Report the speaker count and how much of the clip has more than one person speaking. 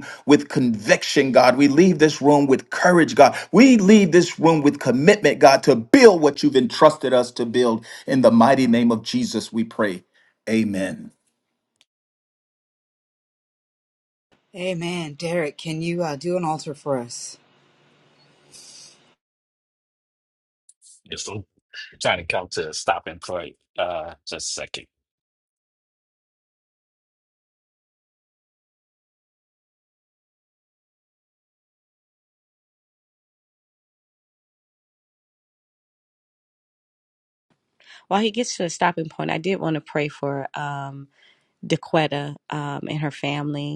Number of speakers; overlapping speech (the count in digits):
4, no overlap